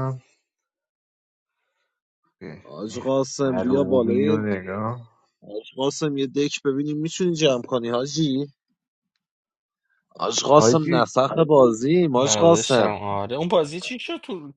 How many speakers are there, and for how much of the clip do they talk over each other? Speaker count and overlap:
three, about 15%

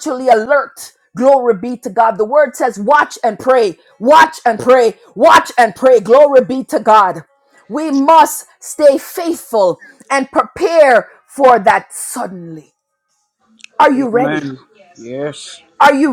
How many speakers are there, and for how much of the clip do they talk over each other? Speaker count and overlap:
two, about 3%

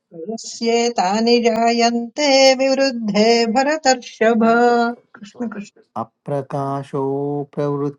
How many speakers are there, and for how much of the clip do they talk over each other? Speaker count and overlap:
two, no overlap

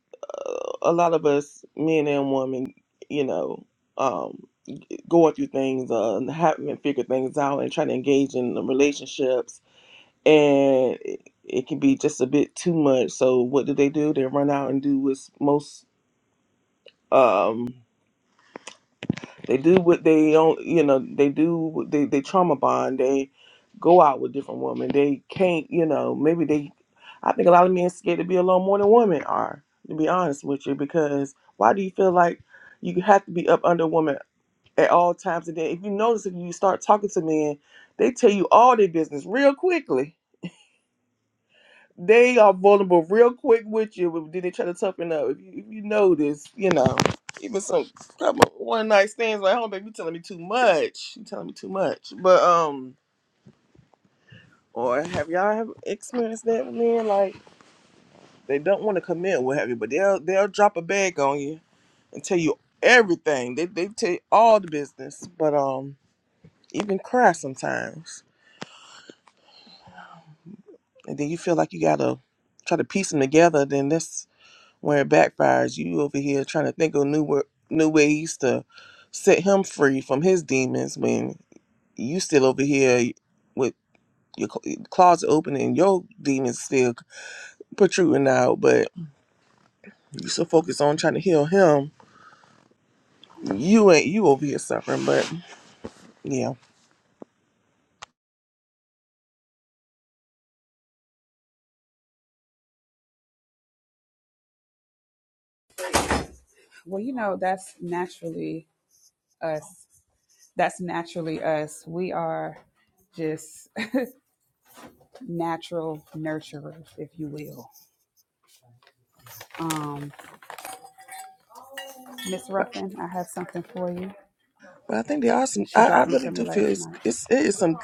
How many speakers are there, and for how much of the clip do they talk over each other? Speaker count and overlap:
two, about 1%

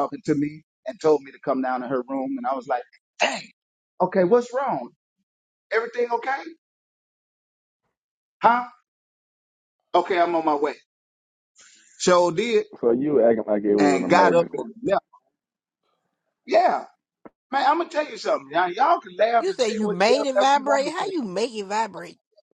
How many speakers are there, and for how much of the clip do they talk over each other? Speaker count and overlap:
three, about 11%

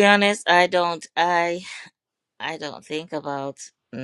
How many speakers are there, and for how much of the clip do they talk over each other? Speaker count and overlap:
one, no overlap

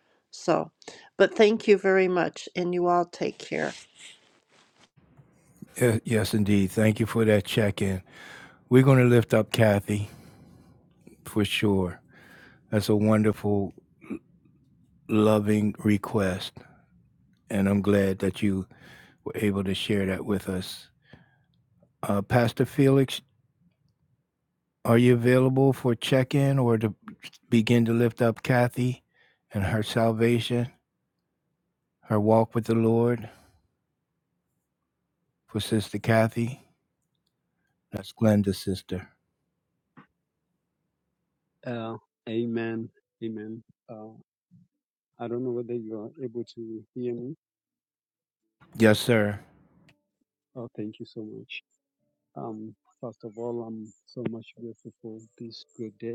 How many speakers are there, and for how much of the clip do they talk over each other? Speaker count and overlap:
three, no overlap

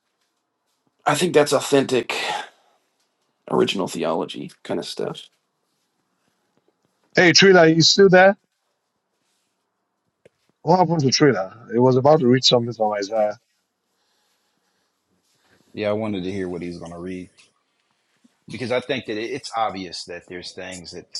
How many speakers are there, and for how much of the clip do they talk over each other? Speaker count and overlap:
three, no overlap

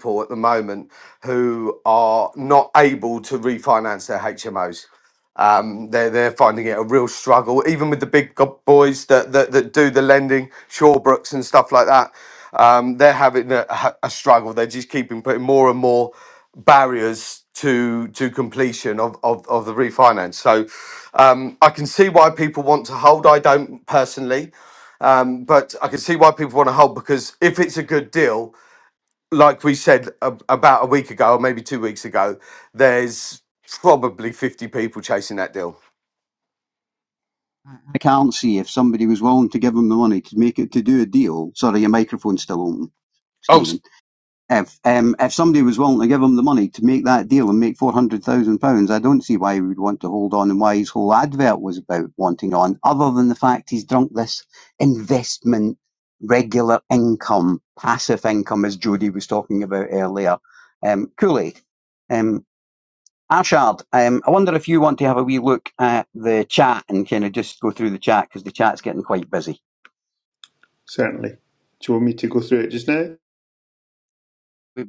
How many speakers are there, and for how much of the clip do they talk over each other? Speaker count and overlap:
three, under 1%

